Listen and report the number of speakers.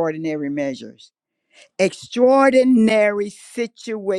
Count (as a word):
one